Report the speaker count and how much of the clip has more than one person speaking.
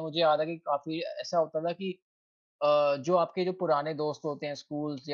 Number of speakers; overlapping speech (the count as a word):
one, no overlap